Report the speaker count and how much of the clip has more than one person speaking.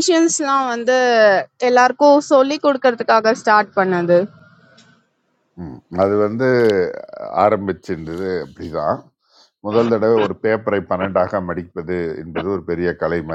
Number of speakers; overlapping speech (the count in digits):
2, no overlap